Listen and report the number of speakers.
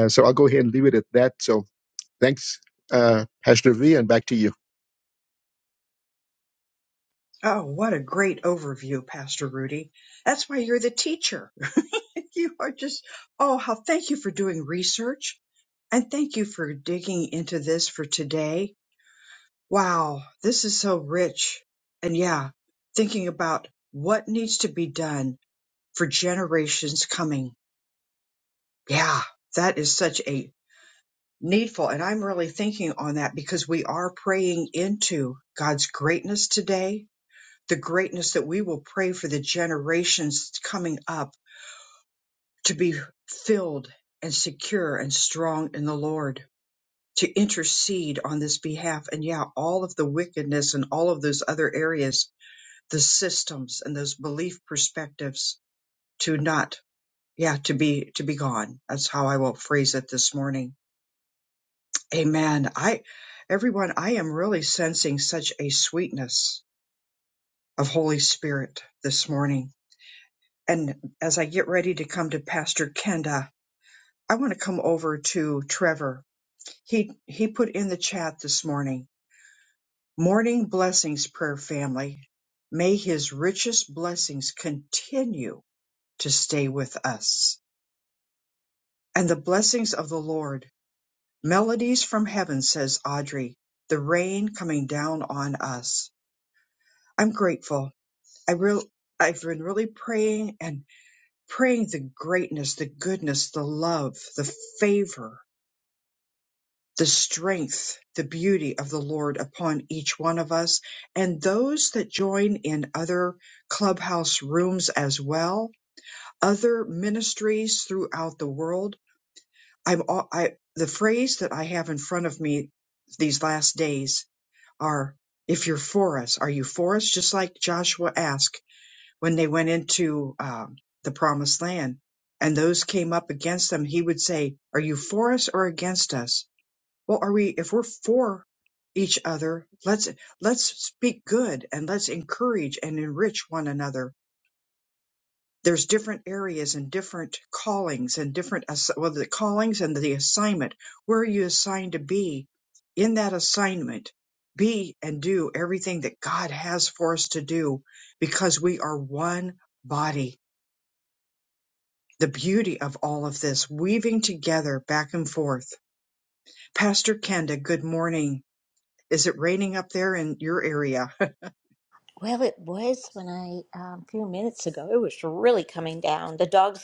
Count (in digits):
3